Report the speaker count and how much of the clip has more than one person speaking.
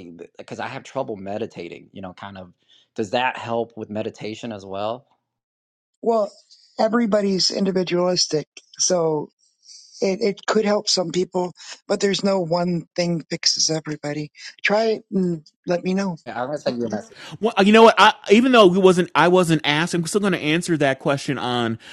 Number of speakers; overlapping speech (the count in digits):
3, no overlap